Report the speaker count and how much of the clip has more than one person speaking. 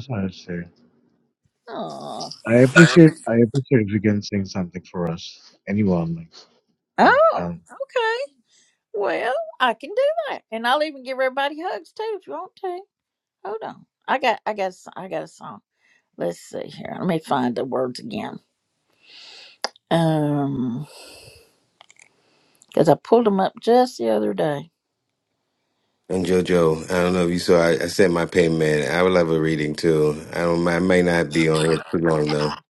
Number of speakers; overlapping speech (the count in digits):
3, about 2%